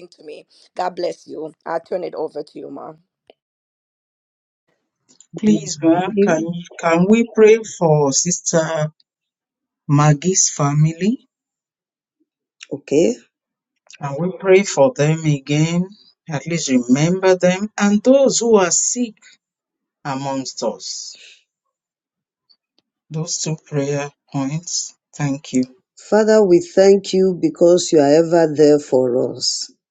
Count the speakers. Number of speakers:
3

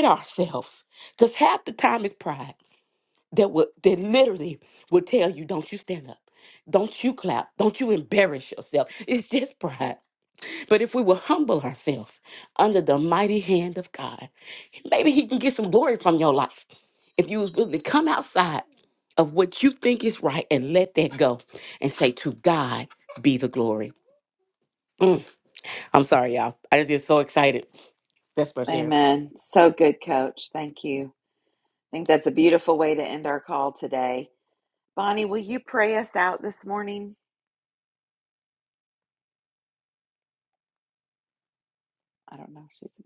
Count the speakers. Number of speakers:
2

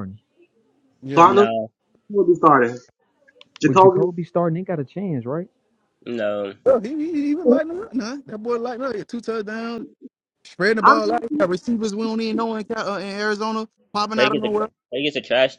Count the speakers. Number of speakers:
4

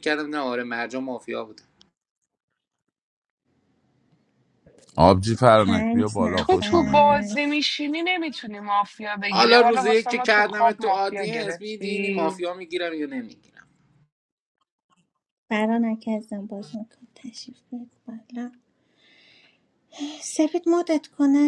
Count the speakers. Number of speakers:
4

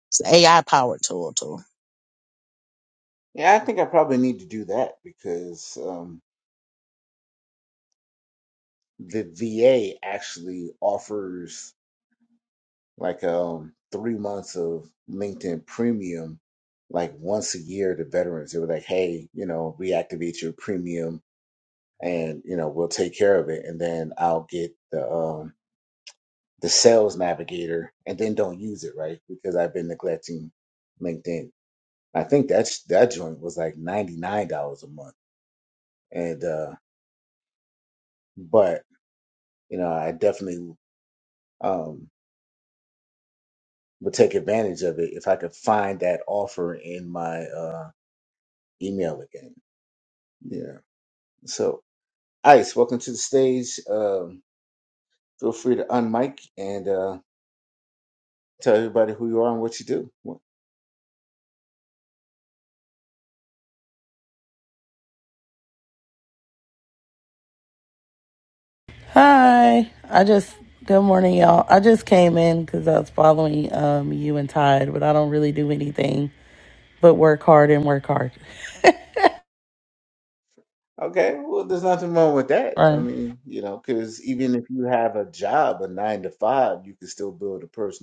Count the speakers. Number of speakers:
3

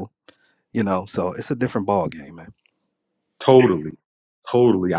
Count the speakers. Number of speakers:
2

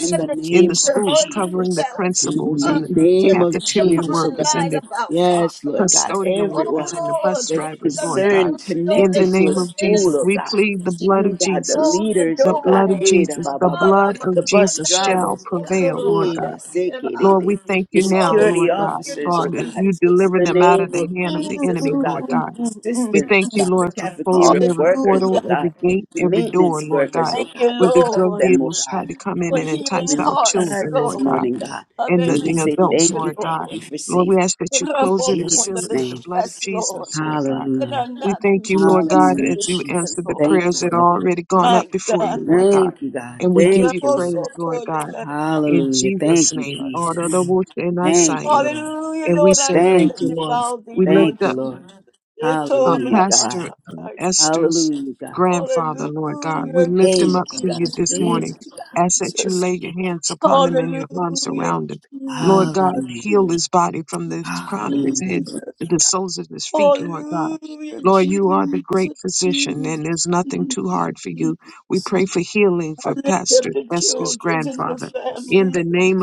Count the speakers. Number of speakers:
3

